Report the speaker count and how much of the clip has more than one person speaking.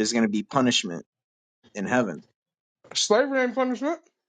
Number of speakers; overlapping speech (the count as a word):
two, no overlap